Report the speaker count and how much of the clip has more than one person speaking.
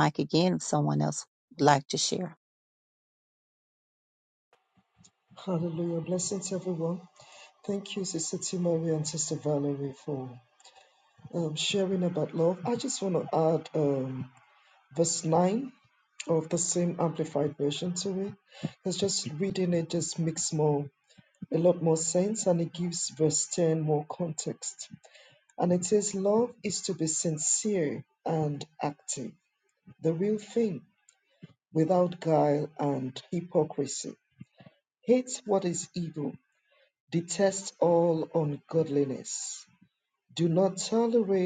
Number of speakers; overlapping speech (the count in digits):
2, no overlap